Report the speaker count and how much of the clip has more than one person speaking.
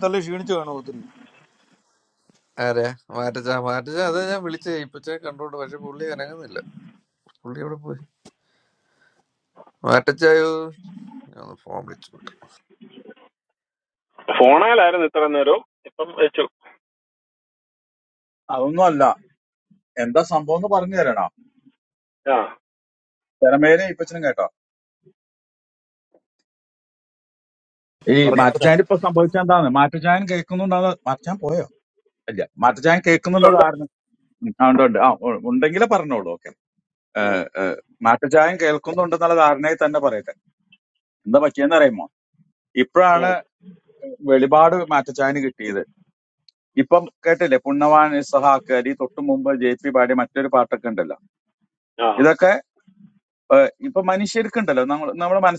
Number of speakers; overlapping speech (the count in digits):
4, about 2%